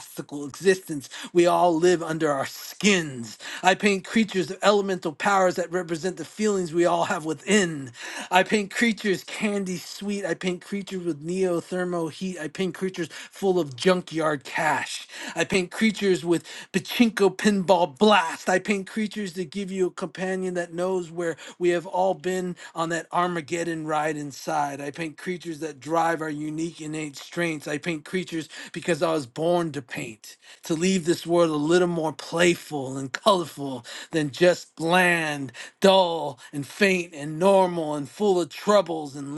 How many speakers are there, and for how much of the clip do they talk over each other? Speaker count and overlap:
1, no overlap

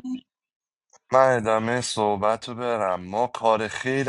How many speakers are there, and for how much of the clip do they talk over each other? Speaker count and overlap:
1, no overlap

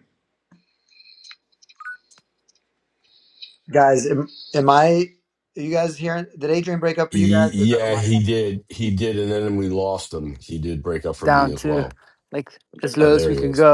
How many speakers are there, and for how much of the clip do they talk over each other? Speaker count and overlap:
3, about 15%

